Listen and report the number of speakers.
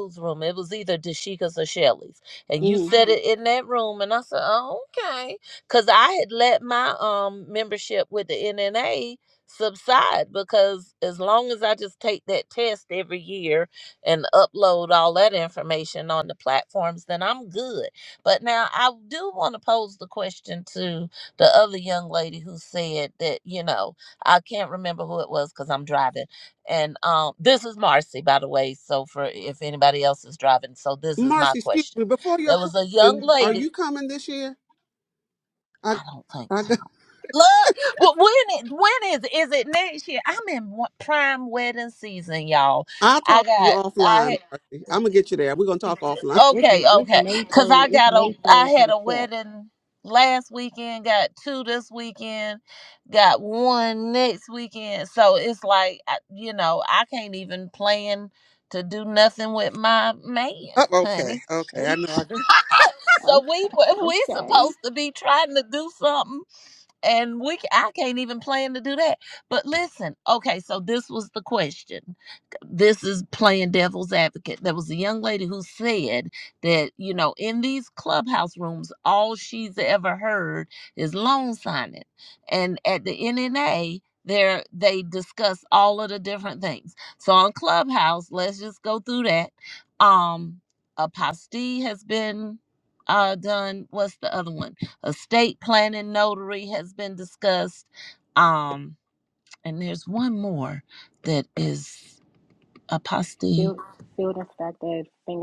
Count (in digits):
3